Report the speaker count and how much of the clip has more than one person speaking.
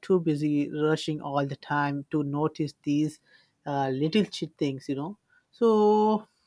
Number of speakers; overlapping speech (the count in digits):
1, no overlap